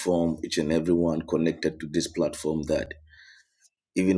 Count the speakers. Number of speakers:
one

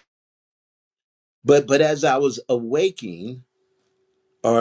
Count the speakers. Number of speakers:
one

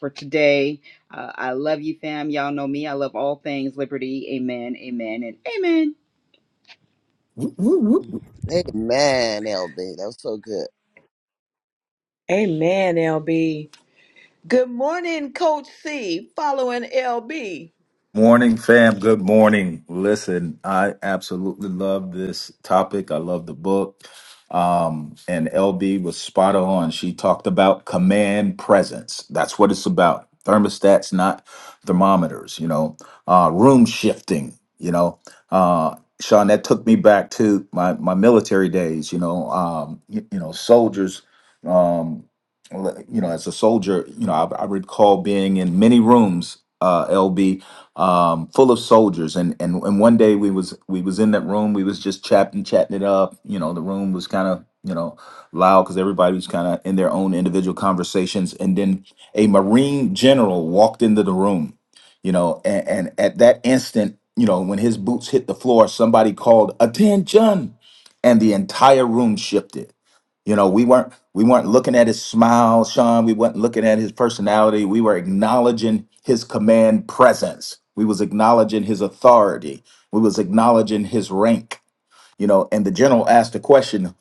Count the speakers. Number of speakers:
four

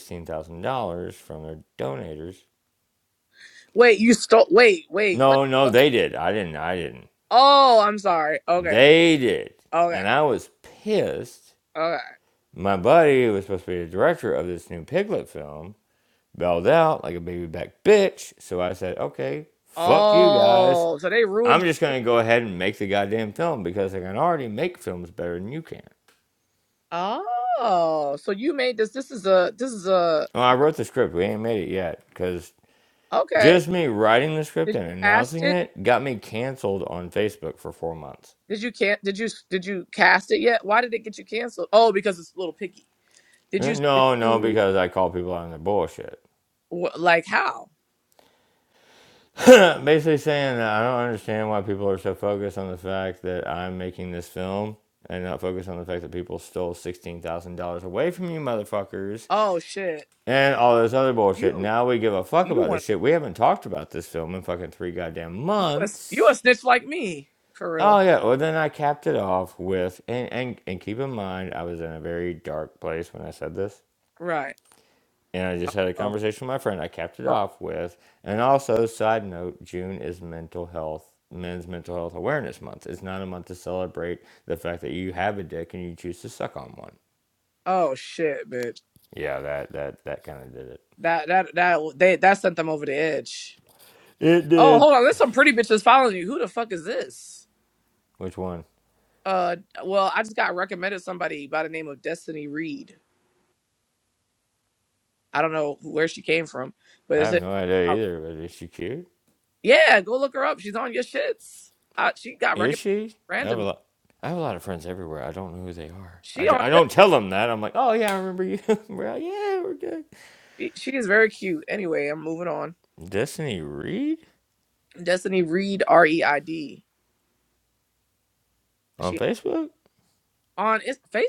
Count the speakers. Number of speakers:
two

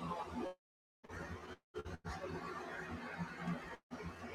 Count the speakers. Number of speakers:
zero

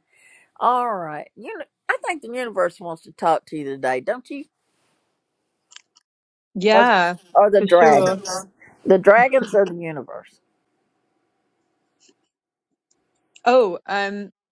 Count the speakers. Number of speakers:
two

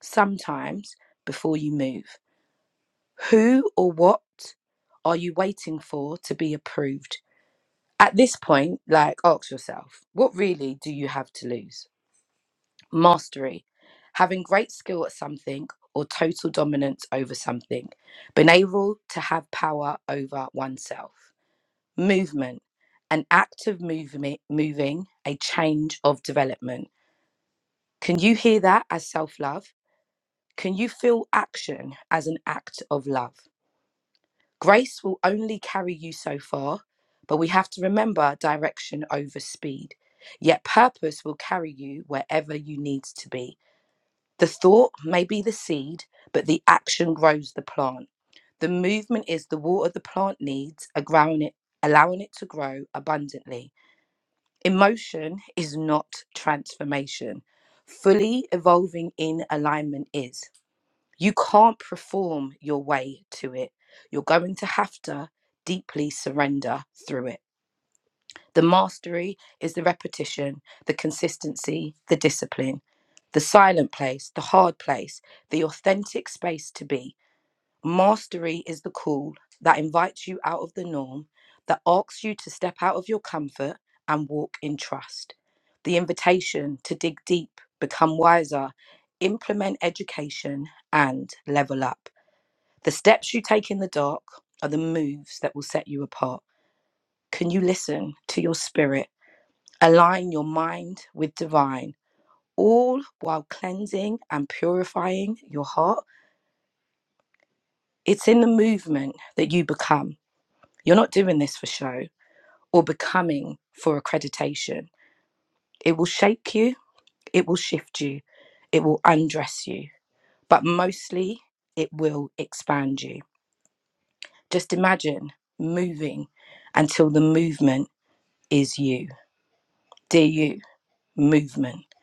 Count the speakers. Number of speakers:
one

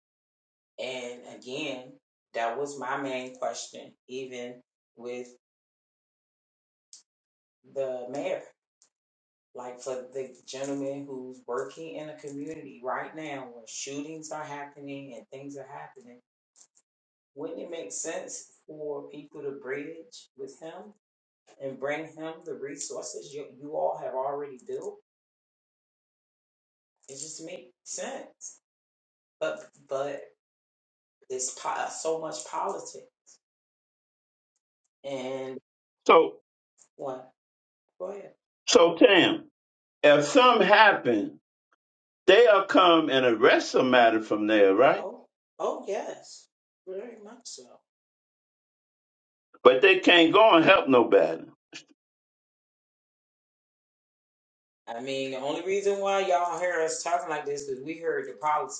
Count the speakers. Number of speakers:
two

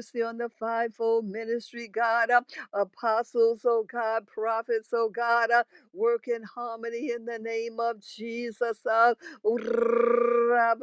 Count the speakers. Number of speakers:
one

